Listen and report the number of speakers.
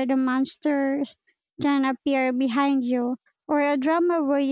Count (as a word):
one